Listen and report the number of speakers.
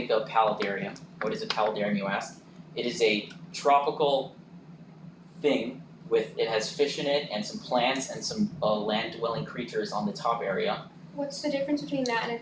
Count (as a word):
two